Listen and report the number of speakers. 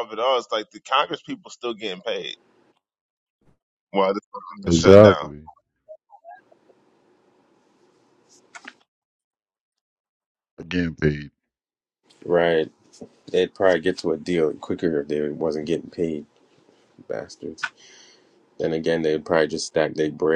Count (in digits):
3